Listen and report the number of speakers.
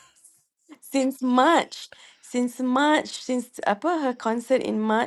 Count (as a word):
one